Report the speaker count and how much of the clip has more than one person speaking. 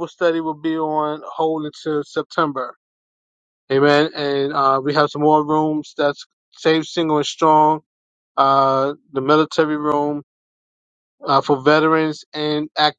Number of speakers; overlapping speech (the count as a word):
one, no overlap